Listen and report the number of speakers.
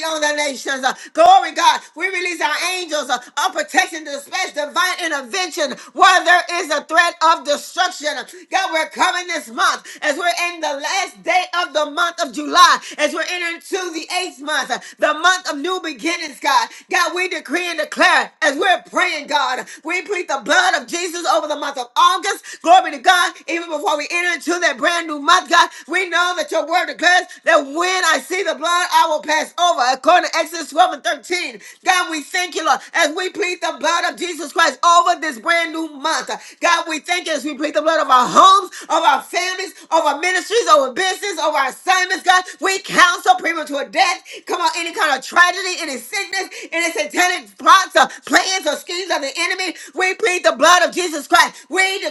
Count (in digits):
1